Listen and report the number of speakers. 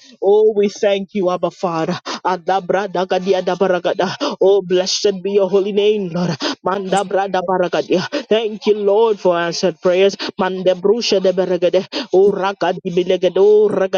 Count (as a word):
one